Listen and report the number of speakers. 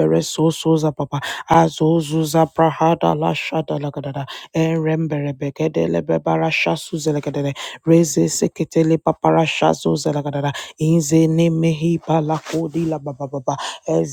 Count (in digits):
1